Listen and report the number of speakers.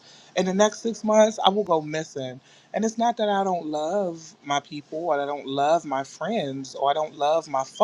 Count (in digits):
1